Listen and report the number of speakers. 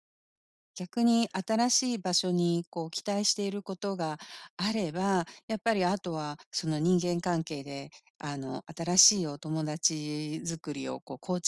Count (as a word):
one